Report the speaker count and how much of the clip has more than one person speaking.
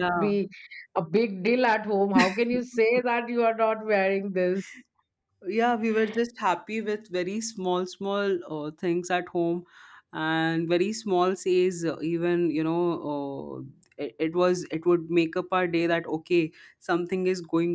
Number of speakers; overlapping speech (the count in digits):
2, about 2%